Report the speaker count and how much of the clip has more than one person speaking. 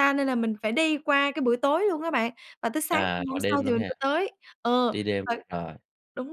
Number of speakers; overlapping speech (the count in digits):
2, about 24%